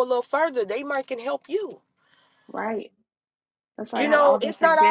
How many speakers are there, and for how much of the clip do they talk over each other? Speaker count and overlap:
2, about 20%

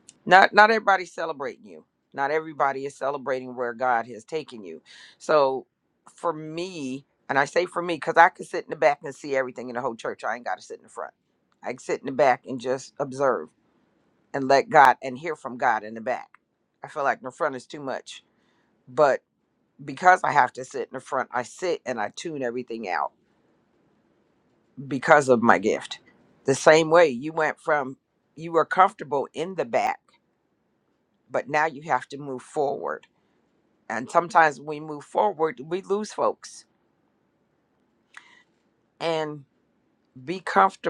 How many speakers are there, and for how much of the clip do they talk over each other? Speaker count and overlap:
1, no overlap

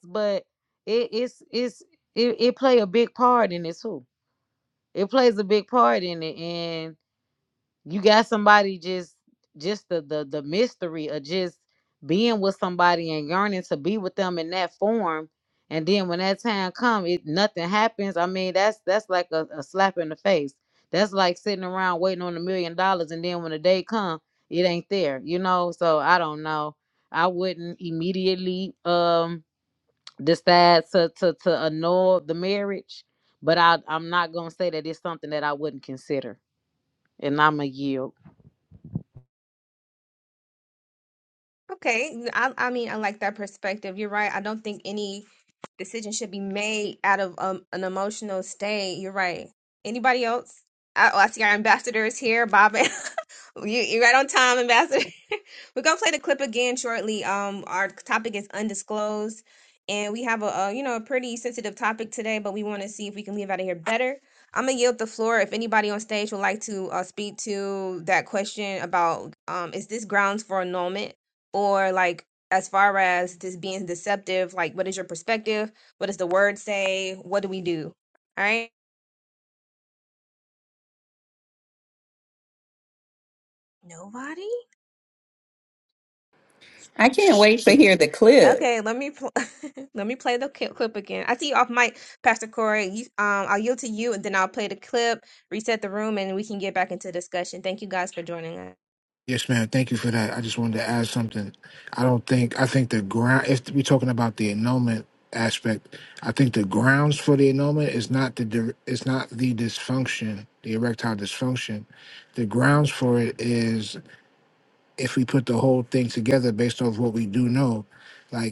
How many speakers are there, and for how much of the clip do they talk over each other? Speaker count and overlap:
4, under 1%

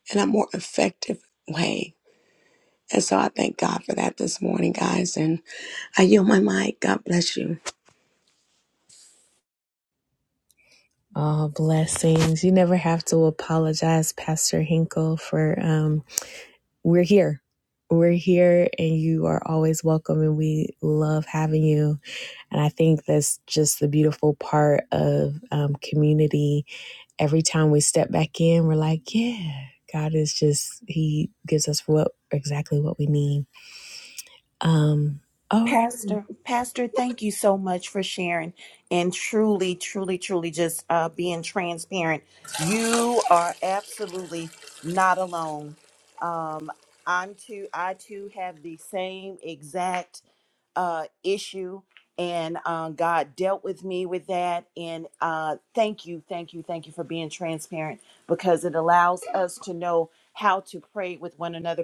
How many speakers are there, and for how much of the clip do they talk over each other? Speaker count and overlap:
3, under 1%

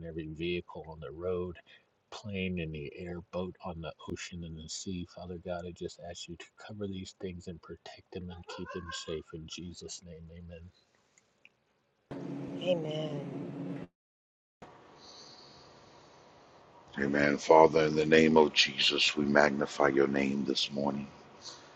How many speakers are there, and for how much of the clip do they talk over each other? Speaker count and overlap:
3, no overlap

